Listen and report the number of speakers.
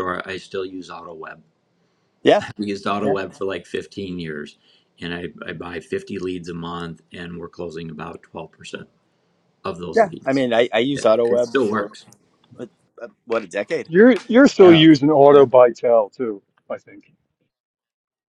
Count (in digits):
3